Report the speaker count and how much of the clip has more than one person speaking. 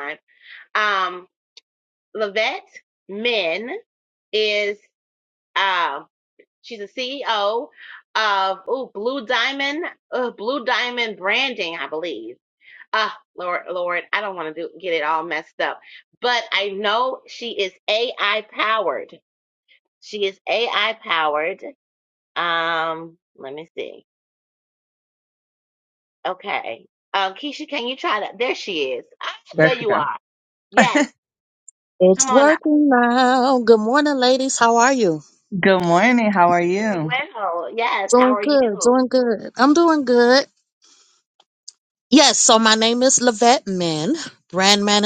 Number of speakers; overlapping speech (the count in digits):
3, about 4%